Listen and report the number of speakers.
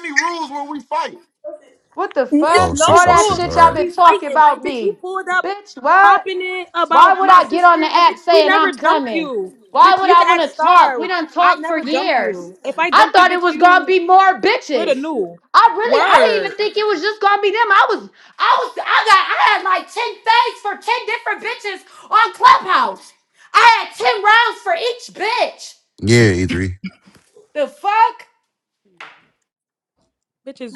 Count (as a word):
four